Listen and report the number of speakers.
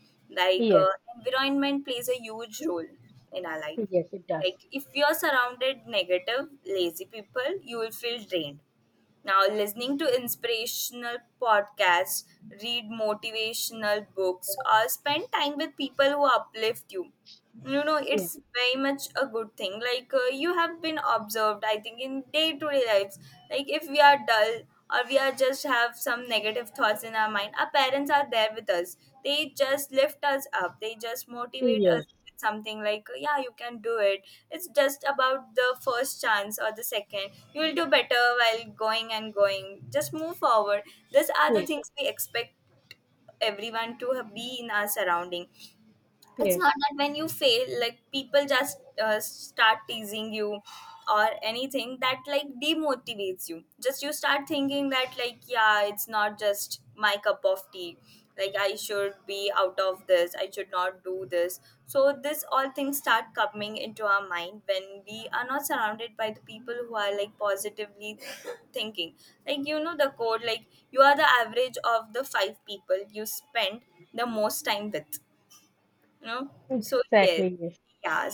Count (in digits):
2